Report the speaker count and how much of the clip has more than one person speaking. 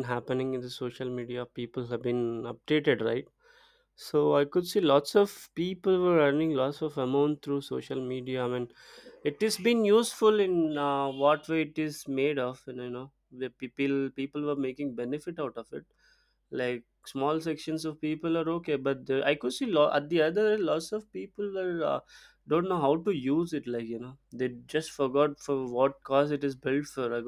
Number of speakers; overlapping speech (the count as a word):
one, no overlap